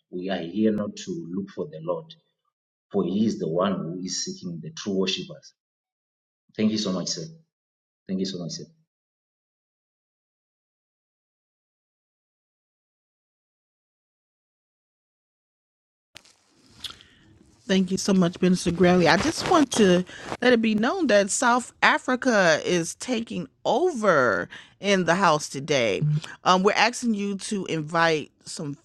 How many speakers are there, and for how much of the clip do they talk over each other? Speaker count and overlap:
two, no overlap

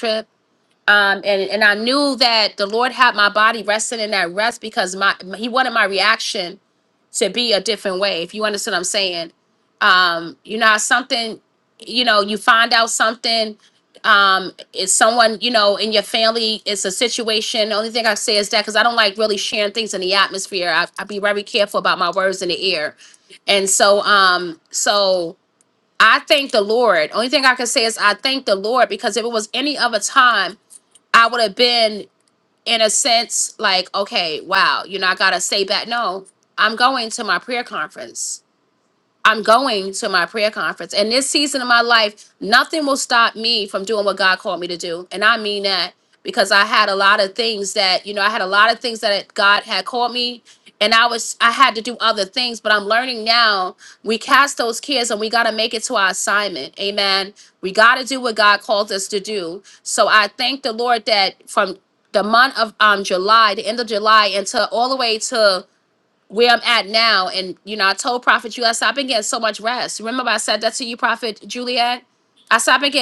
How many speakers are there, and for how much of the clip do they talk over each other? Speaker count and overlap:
one, no overlap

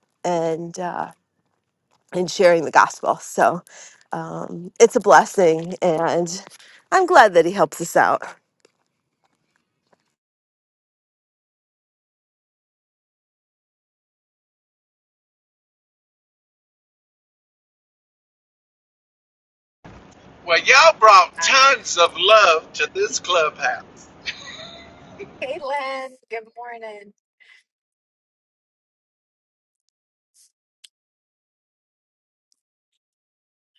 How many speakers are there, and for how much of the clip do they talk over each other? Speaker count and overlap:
three, no overlap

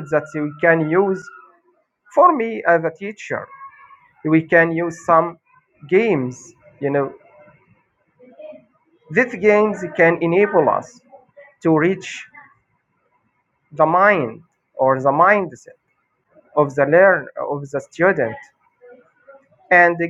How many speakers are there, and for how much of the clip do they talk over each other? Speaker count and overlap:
one, no overlap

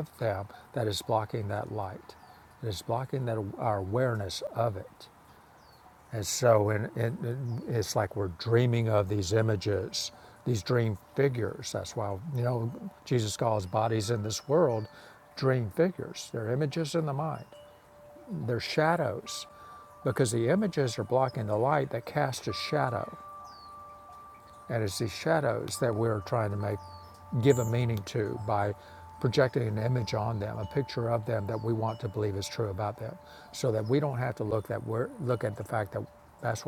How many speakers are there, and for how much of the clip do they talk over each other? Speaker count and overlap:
one, no overlap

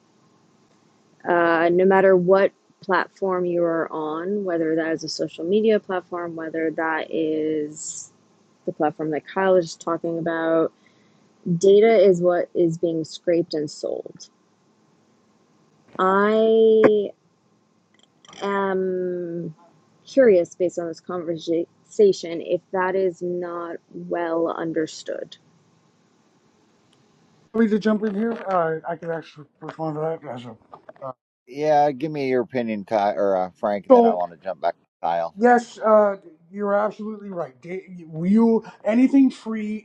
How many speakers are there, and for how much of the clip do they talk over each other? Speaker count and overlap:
three, about 1%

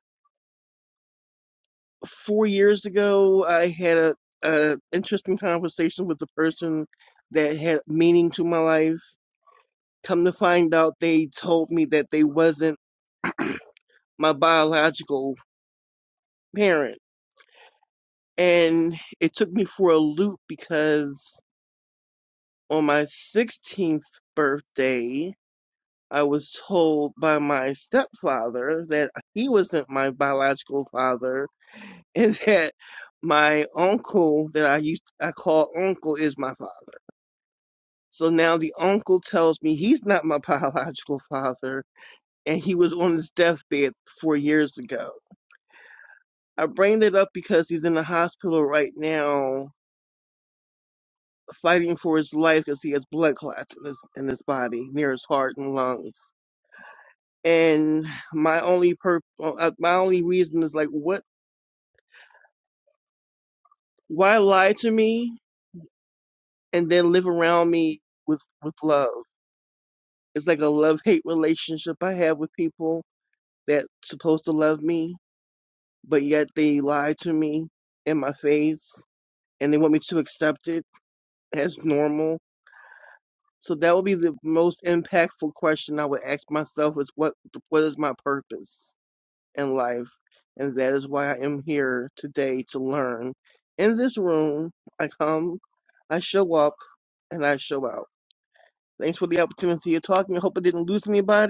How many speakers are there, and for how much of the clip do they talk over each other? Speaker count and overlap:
one, no overlap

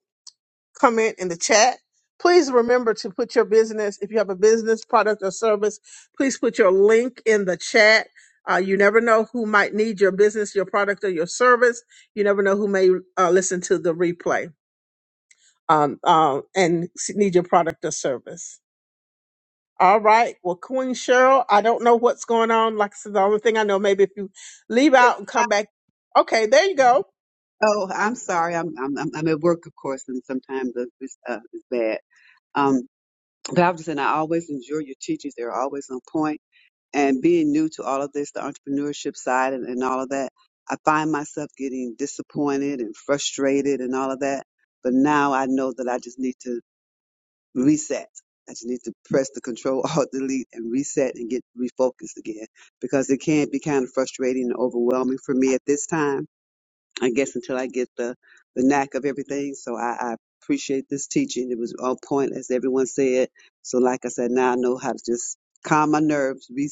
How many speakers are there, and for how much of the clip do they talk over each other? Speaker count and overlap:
two, no overlap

